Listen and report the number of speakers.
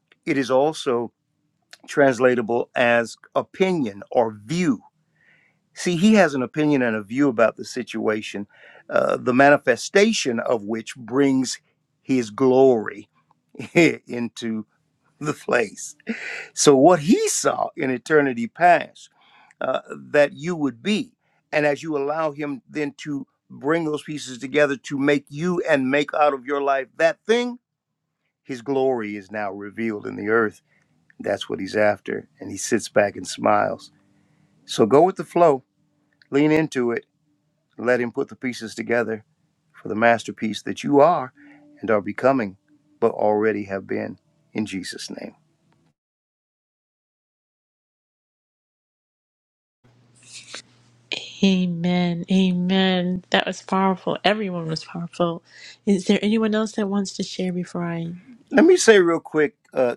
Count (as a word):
two